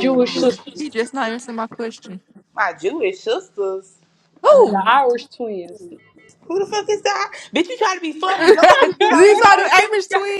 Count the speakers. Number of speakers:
3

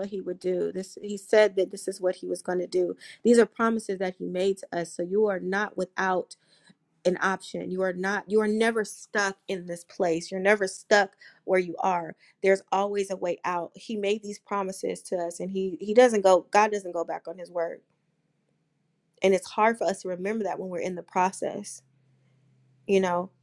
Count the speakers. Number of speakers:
1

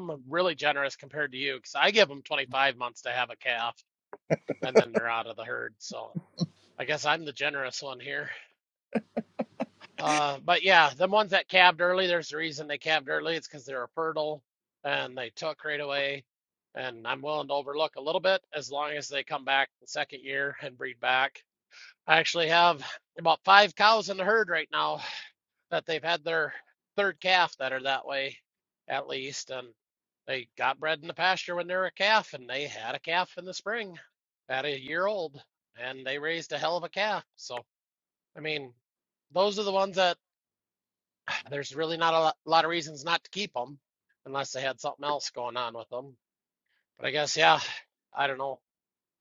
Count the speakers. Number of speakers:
1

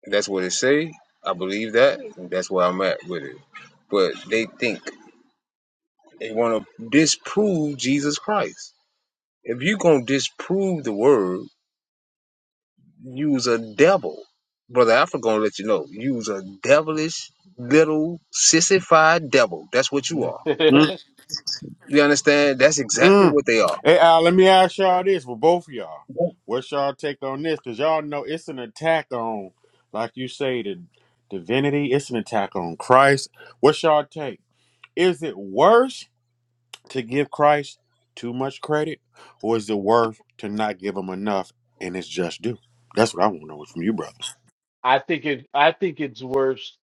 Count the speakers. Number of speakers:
3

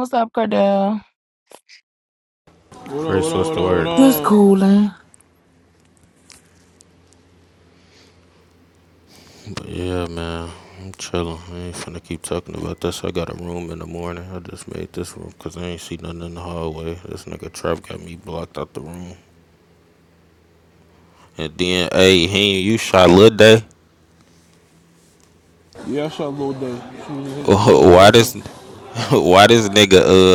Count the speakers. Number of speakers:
3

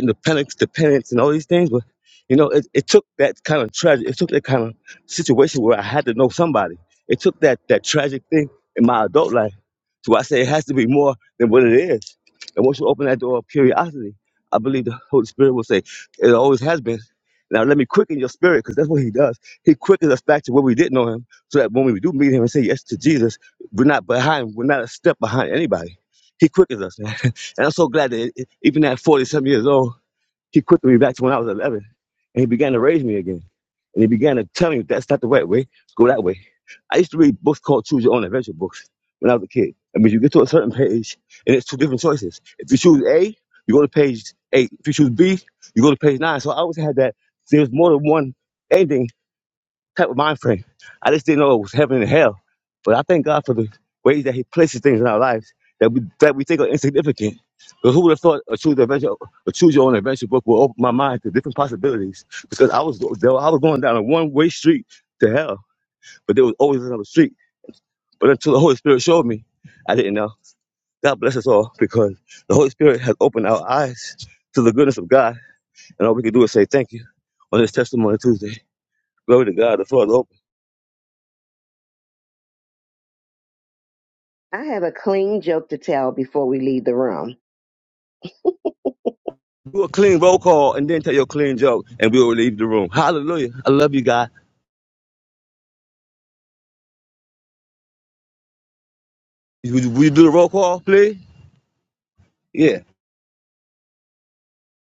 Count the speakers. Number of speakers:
2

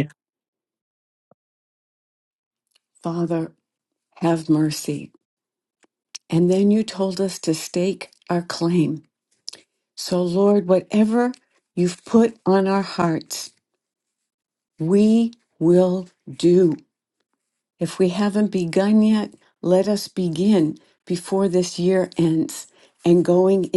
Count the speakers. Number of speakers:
1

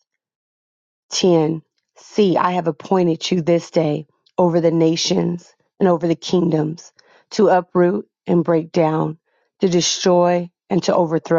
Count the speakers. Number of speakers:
1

